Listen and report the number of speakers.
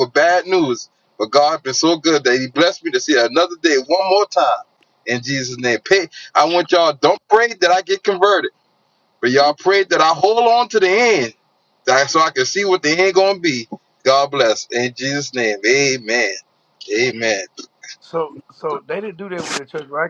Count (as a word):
two